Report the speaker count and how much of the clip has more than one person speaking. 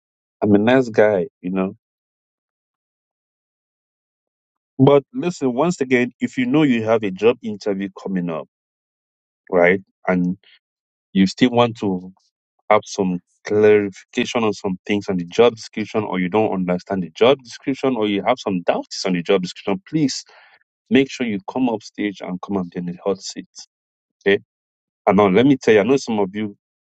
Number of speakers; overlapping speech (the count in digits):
1, no overlap